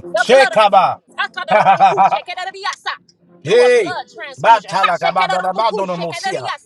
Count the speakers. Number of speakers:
2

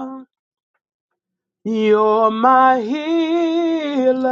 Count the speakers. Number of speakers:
1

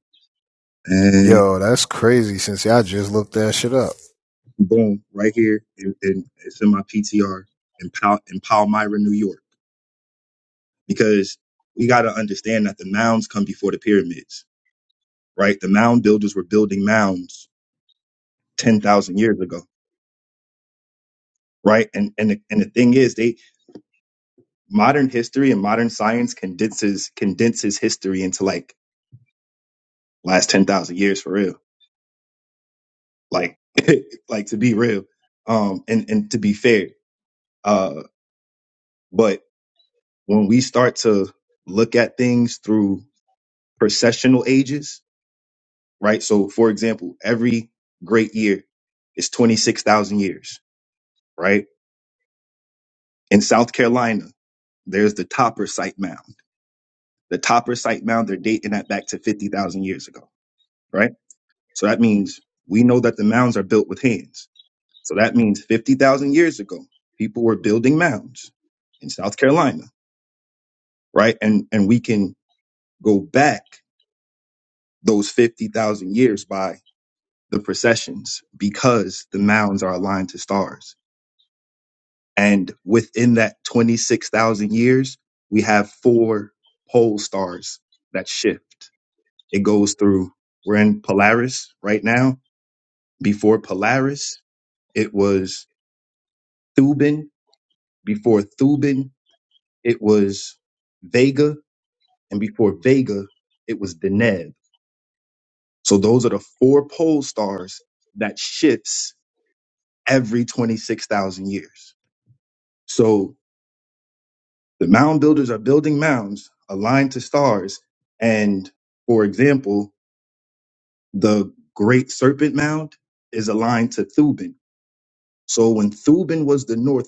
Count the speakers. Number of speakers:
2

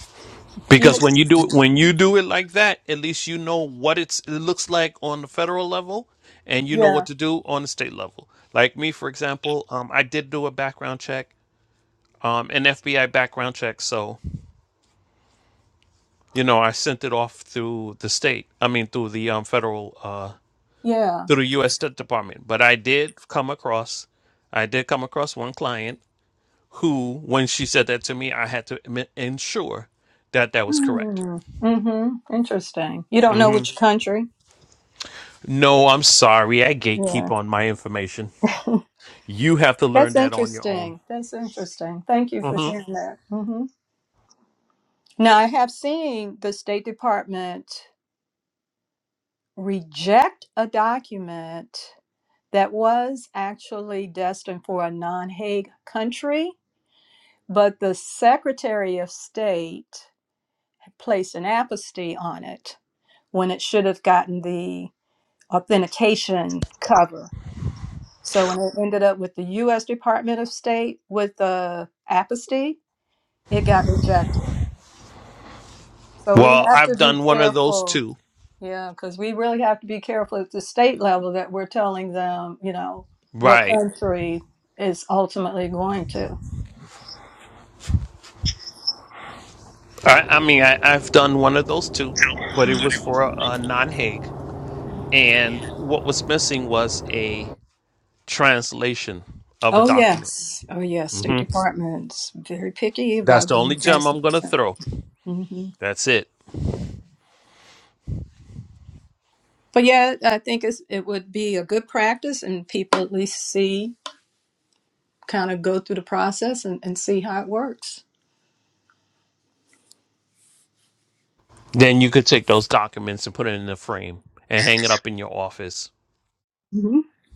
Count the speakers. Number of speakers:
2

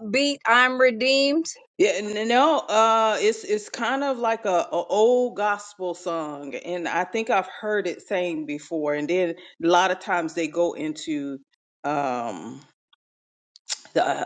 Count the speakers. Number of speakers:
2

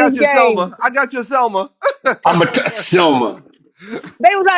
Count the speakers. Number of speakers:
3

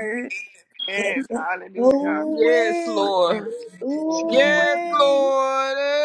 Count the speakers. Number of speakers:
3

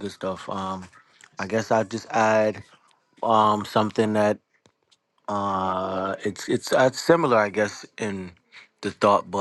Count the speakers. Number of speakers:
1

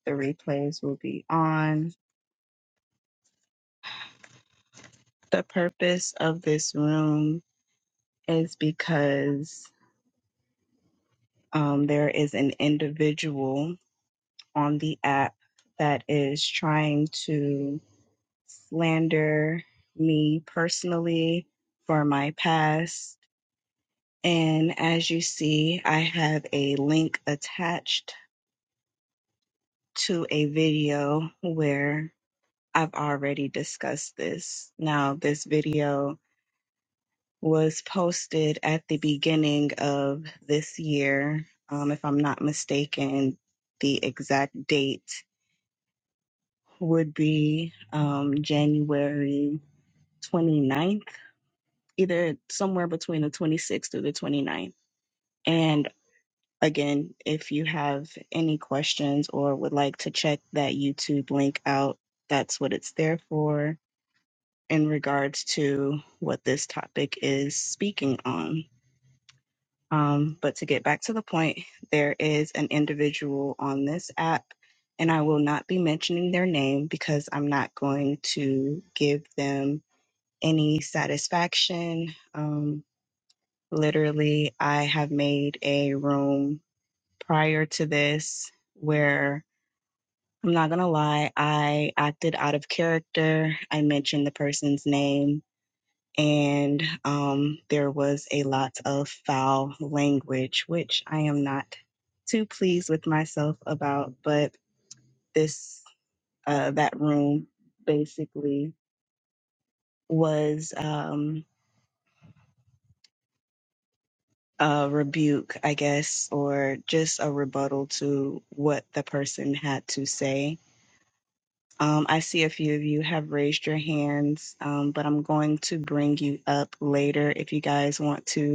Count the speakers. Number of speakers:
1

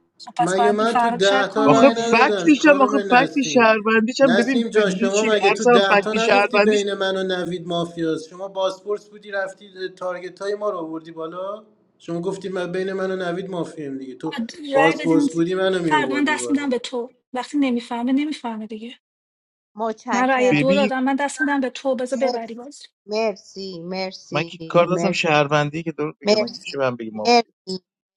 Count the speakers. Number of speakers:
4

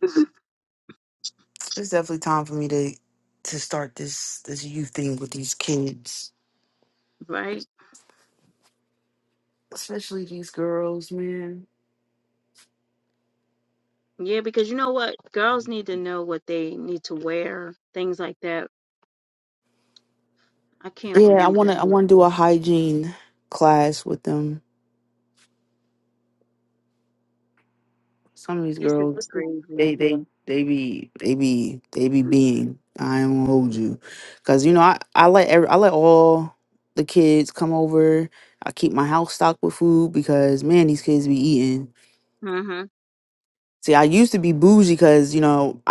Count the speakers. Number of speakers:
2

